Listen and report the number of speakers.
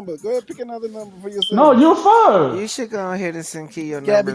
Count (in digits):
3